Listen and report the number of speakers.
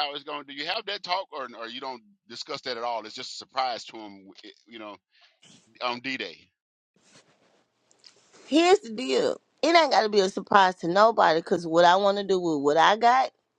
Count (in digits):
2